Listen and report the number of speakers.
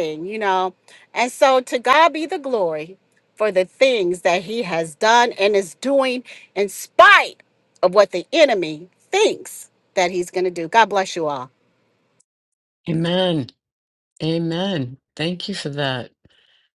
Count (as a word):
two